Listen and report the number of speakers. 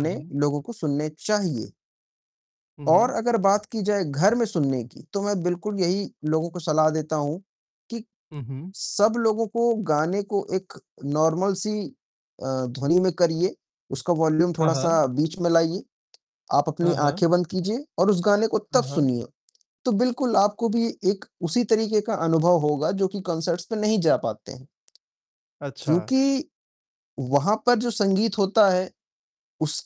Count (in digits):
2